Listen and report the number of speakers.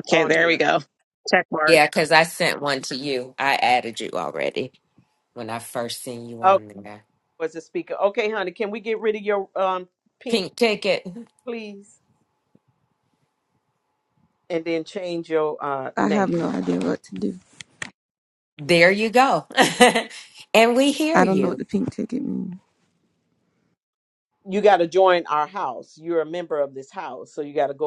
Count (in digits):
4